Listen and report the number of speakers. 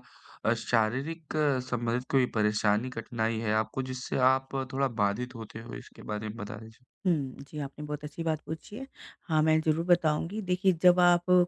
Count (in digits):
2